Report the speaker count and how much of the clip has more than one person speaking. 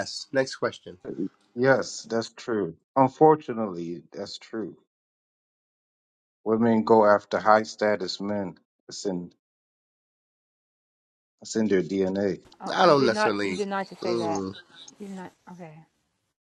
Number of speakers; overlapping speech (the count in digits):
3, about 8%